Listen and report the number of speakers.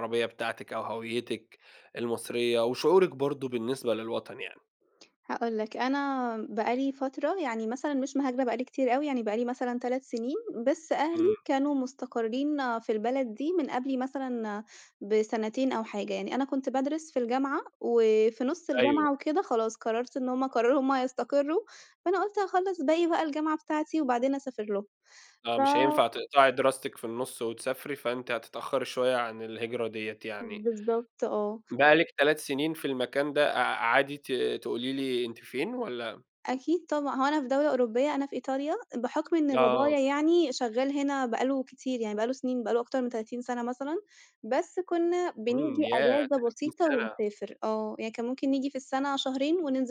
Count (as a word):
two